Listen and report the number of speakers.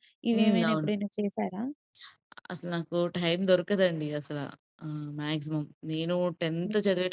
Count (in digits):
2